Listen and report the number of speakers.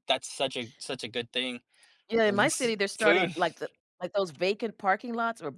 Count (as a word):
two